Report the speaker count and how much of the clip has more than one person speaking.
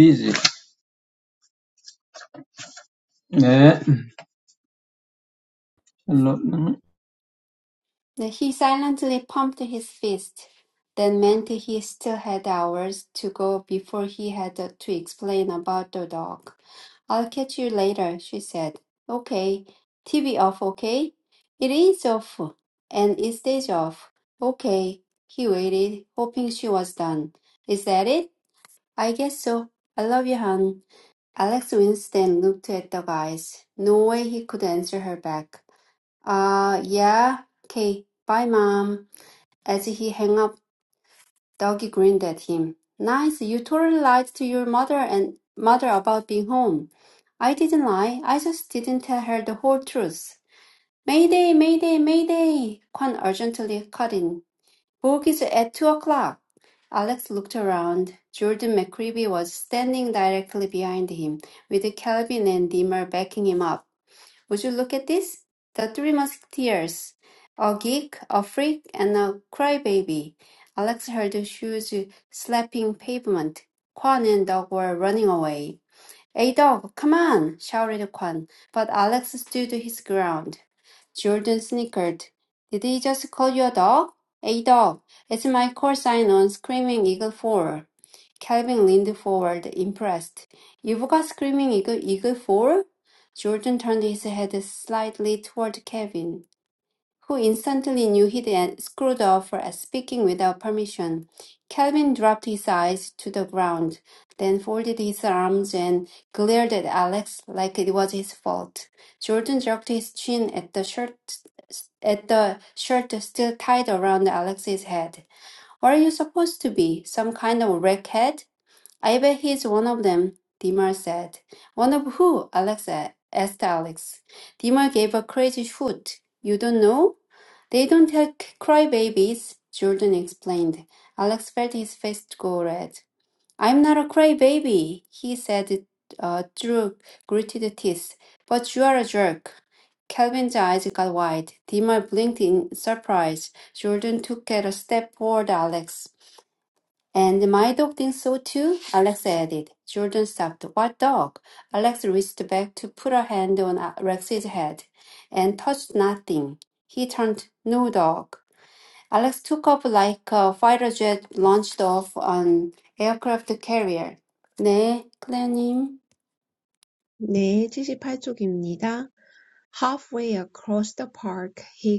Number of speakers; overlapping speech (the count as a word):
three, no overlap